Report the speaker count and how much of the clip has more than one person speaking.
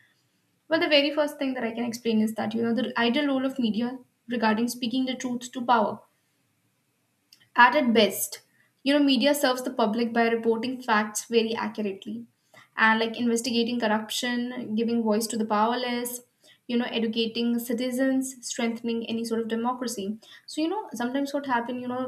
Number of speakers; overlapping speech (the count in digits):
1, no overlap